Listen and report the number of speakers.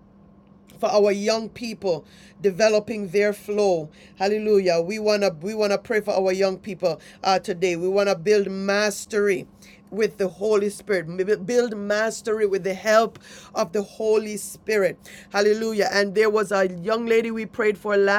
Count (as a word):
one